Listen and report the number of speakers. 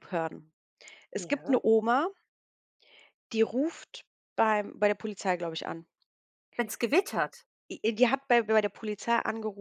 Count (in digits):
2